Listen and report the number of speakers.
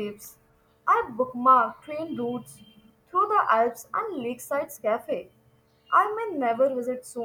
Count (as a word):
one